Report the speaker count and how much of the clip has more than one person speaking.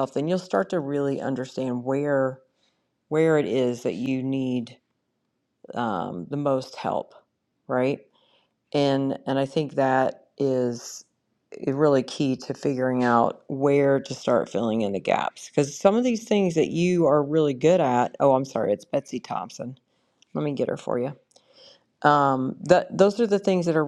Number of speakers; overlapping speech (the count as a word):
one, no overlap